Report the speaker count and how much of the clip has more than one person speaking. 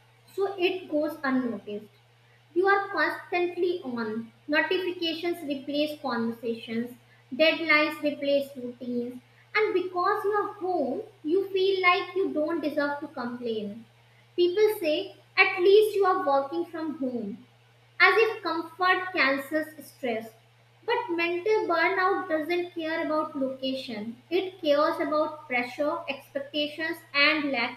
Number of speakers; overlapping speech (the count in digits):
1, no overlap